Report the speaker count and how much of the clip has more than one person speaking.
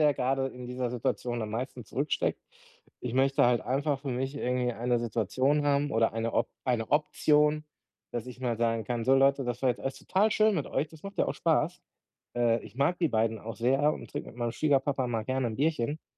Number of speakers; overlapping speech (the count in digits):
1, no overlap